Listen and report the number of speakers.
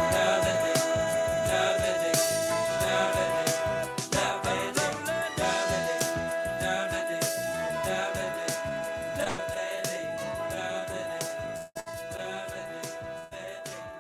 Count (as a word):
zero